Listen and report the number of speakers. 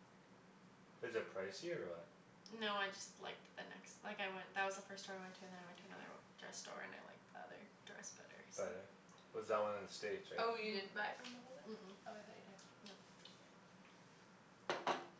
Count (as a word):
three